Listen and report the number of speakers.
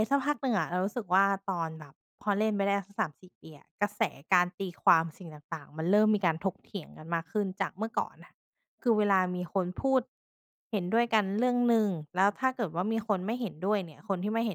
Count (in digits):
1